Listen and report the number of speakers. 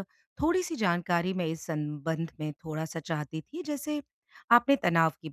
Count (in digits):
1